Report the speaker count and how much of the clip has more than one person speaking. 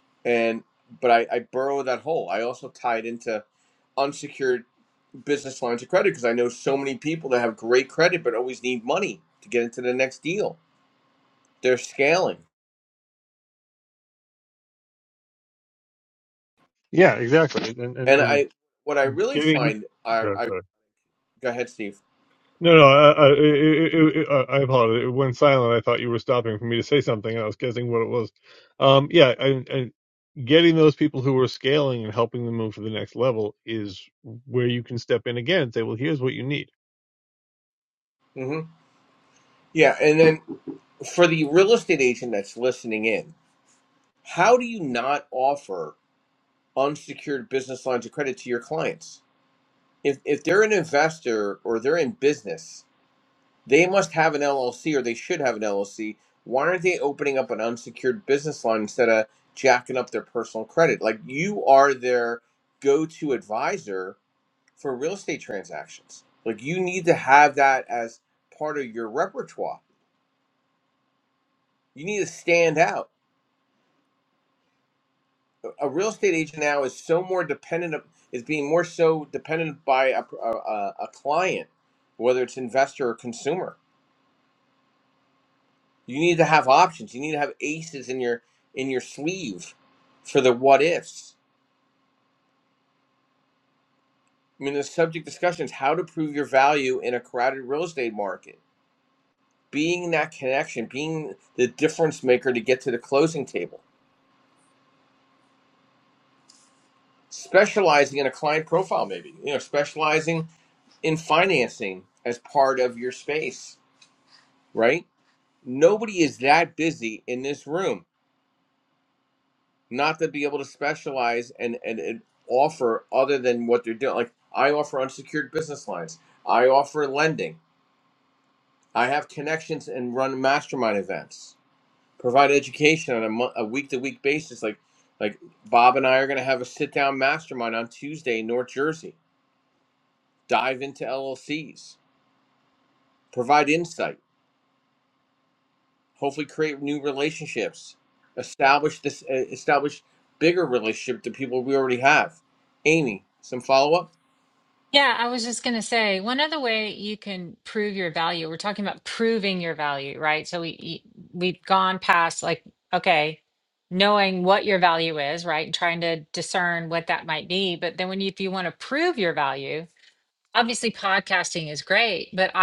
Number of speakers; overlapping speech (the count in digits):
3, under 1%